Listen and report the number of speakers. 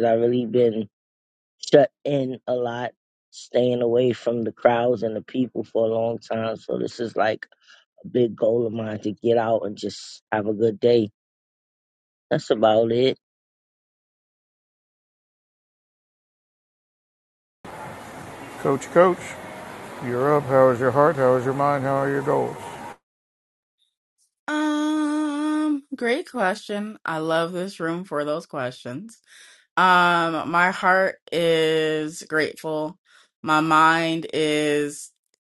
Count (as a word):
three